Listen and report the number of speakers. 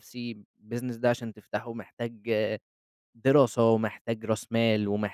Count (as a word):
one